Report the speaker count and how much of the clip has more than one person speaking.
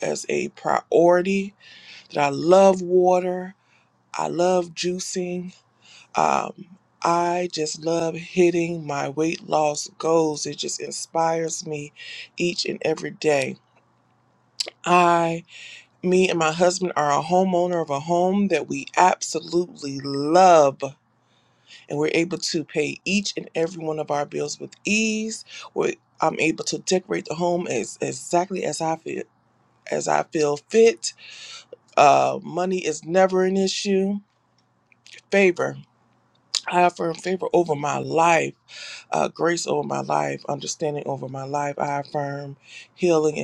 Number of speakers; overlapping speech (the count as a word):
one, no overlap